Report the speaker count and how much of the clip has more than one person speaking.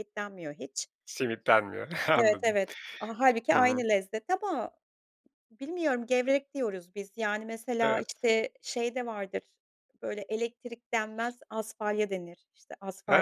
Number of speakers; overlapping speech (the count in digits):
2, about 8%